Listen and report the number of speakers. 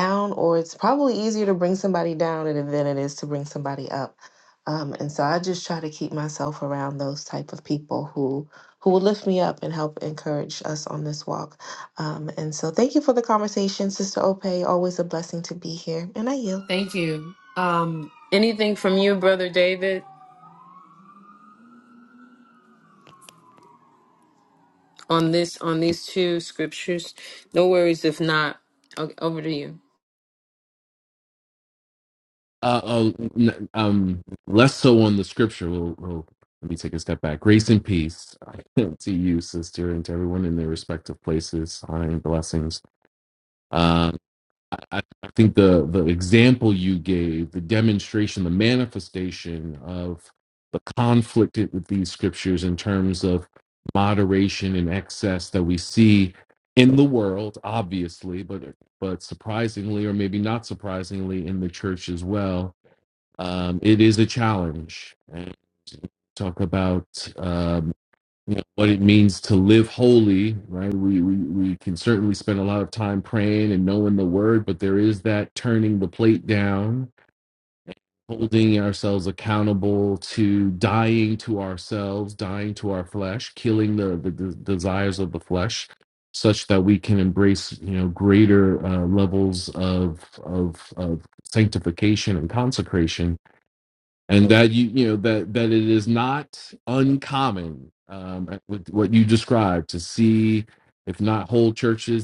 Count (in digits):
3